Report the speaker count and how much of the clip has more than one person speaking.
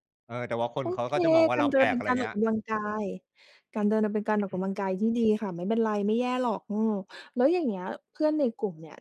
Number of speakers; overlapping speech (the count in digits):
2, about 13%